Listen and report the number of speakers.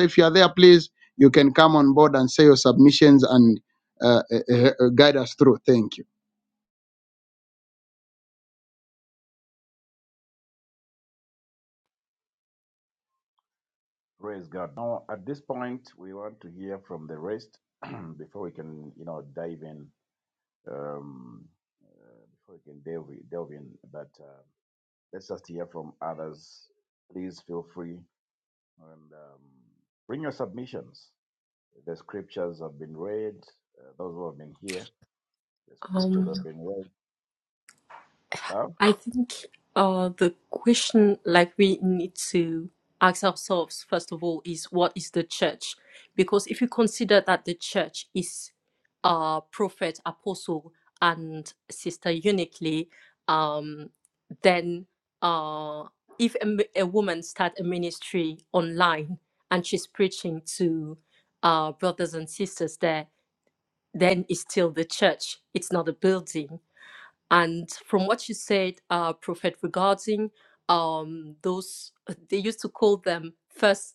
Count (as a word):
three